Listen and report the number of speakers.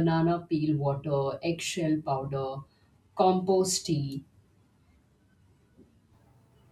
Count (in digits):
1